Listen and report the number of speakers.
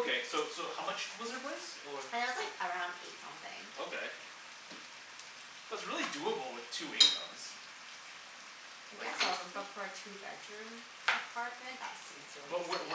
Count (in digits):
2